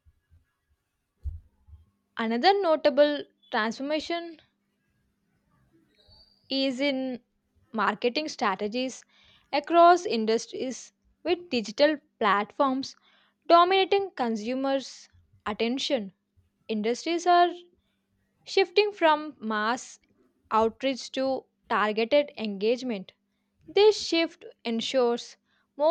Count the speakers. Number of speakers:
1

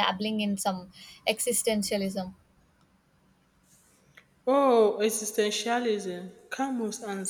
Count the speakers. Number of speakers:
2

